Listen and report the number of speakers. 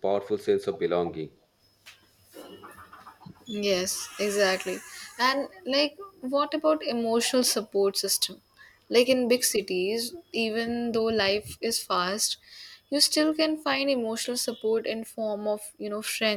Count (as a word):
two